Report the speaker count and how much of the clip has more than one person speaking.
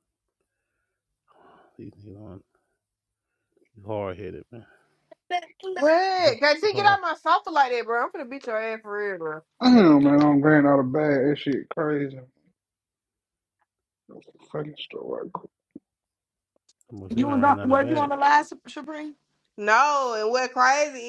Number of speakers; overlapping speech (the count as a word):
four, about 6%